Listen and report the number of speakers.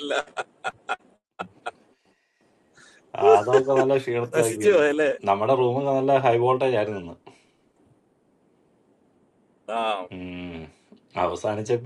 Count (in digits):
2